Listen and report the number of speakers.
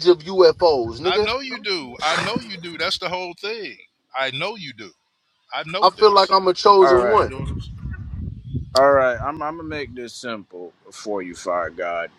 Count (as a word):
three